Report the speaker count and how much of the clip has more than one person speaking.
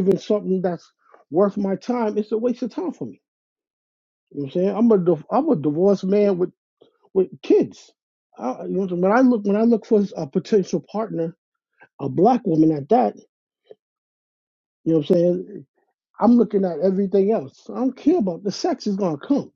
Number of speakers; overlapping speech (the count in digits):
1, no overlap